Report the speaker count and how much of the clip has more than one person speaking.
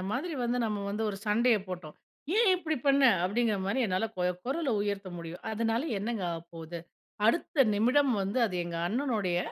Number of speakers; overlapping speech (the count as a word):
one, no overlap